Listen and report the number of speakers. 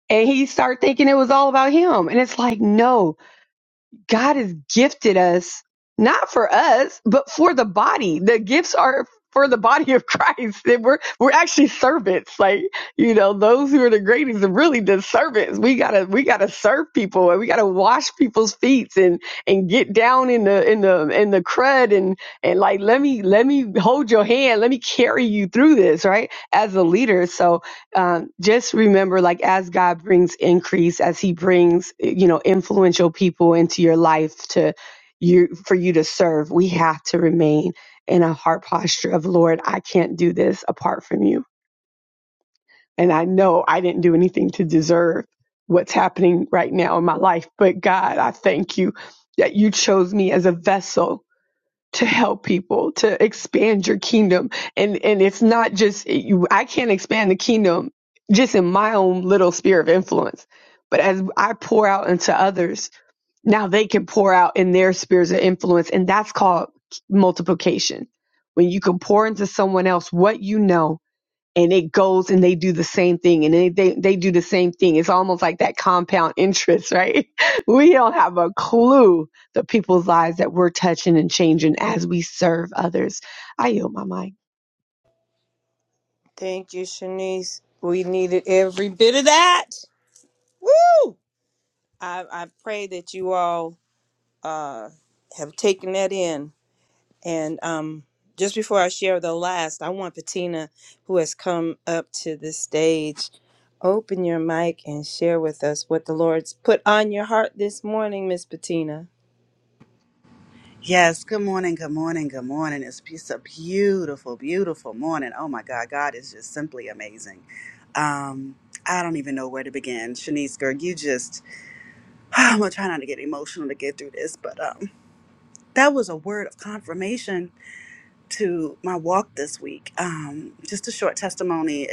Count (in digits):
3